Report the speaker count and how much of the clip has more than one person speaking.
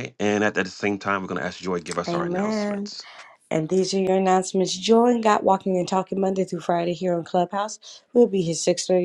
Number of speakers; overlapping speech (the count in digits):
2, about 9%